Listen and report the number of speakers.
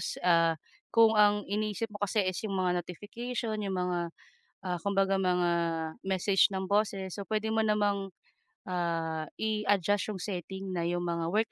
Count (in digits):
1